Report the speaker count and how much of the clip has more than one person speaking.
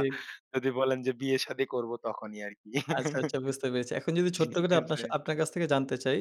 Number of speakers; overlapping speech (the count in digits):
2, about 12%